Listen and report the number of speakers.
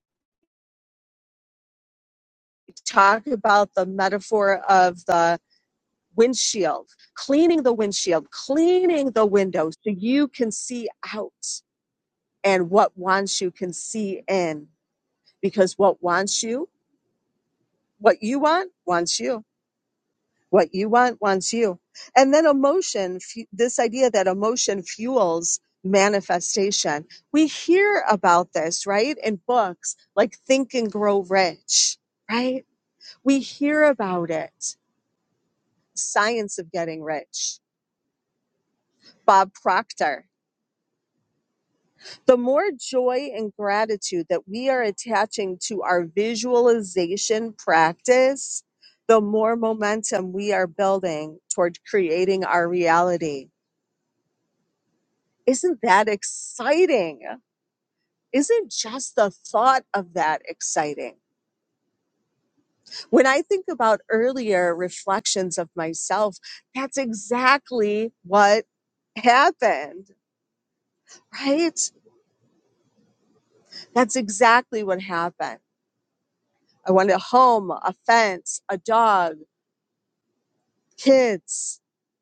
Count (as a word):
one